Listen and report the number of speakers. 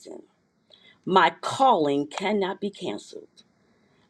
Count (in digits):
1